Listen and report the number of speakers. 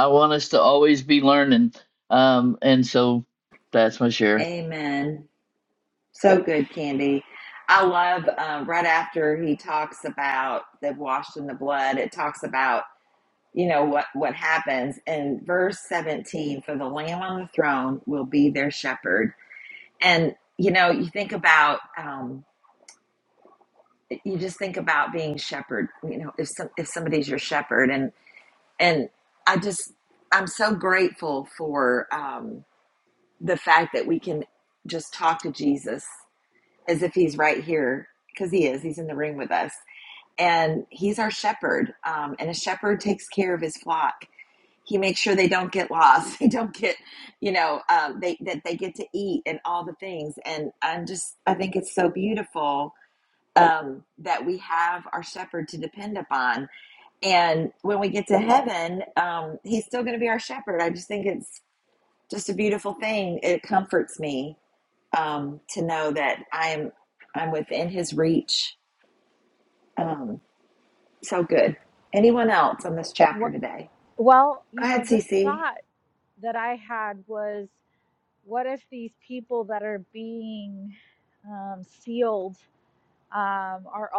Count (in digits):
3